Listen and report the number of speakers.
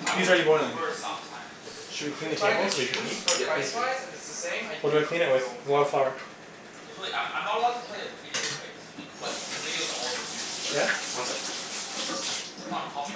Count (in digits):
4